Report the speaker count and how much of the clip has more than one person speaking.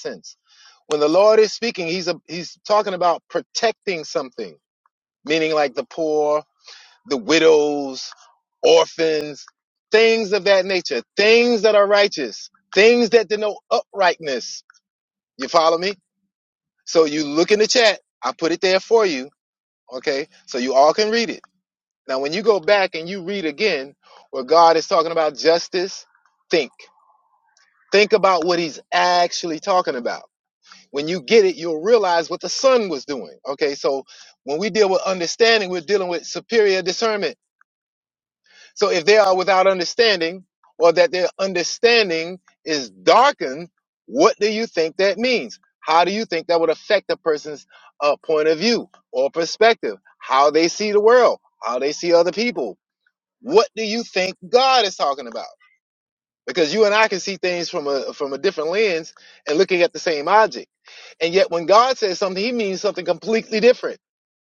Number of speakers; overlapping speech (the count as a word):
one, no overlap